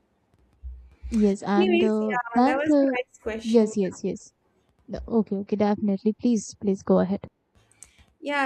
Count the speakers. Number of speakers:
two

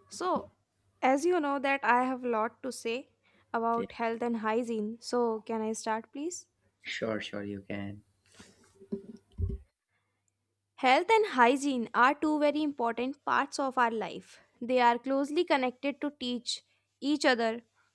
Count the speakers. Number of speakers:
two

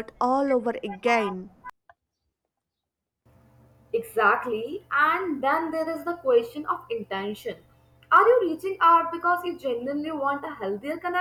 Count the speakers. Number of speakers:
two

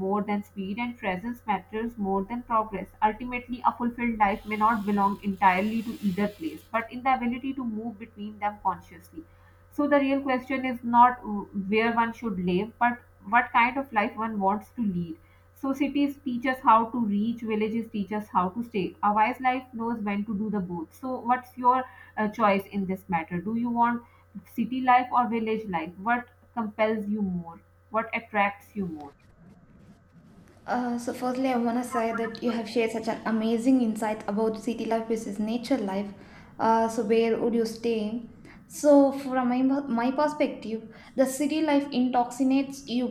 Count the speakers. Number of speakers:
two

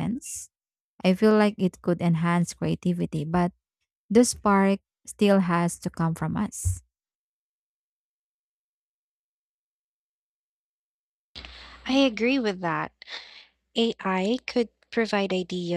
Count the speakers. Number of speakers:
two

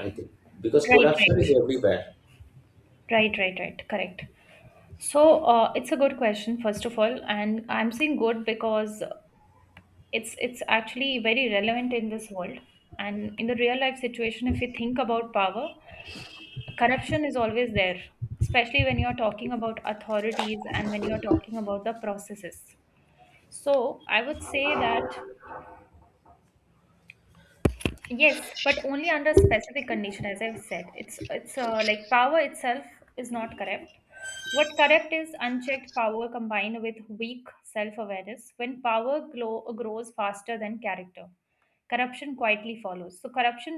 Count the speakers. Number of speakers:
two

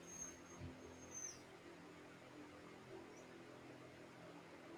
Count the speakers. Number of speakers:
zero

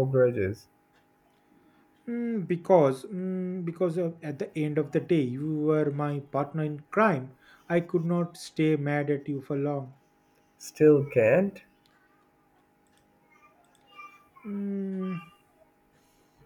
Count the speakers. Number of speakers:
two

